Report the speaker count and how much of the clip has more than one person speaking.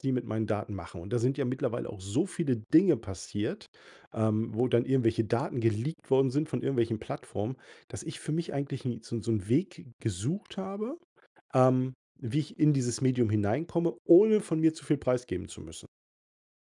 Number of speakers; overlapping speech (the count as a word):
one, no overlap